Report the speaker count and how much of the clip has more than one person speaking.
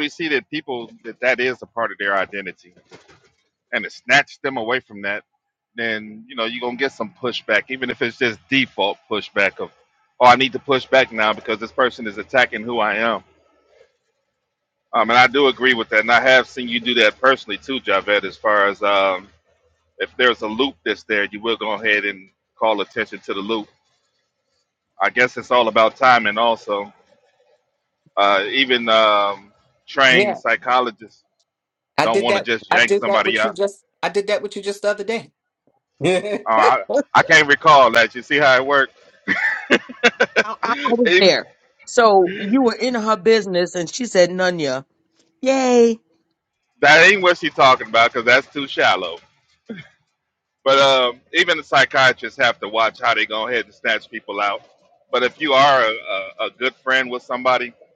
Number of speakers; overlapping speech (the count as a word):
three, about 4%